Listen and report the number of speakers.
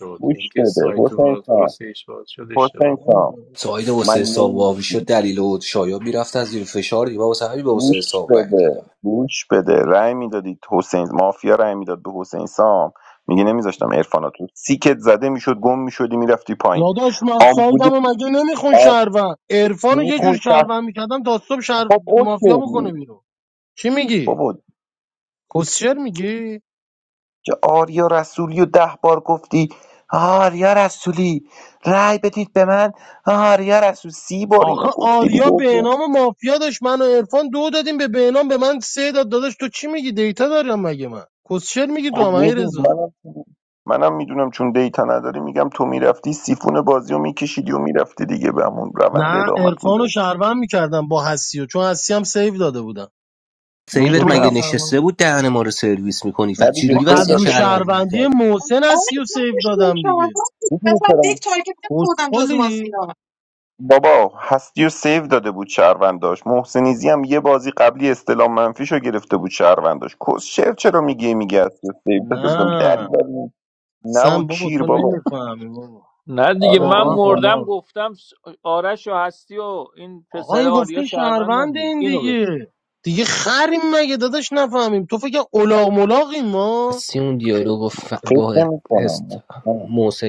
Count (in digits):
6